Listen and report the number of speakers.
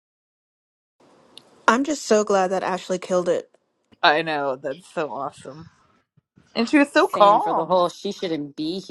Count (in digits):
3